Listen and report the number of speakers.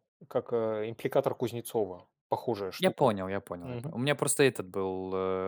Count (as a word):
two